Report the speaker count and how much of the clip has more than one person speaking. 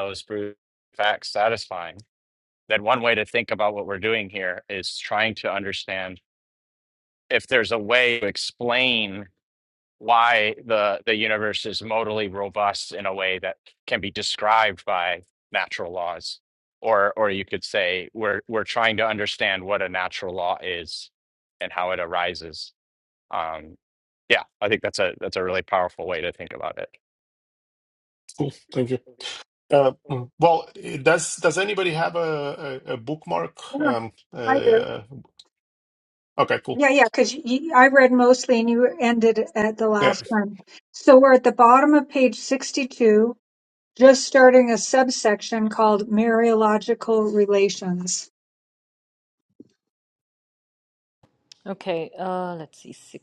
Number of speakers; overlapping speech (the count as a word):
four, about 2%